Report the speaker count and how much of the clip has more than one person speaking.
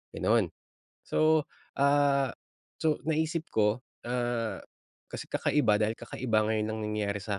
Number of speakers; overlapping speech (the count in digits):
1, no overlap